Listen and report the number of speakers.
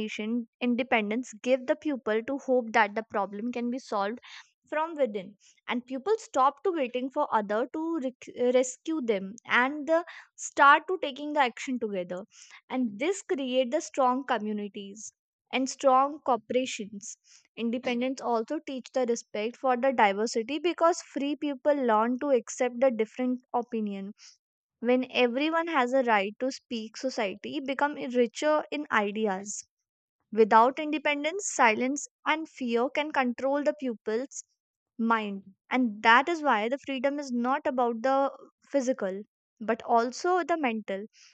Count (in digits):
1